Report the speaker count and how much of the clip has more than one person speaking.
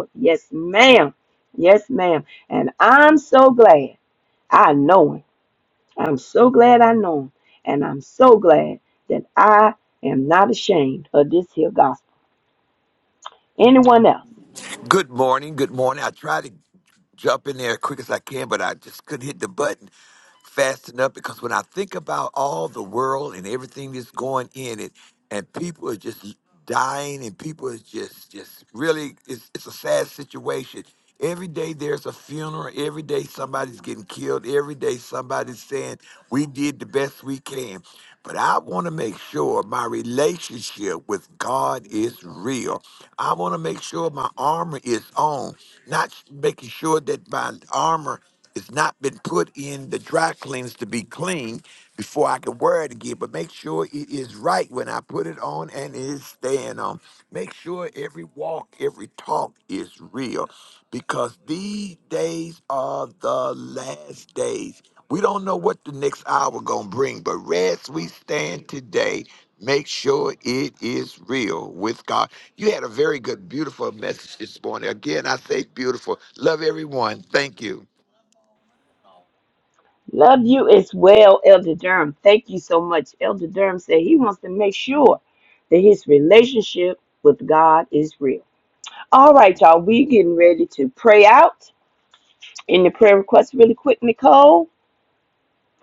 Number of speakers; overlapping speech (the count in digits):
2, no overlap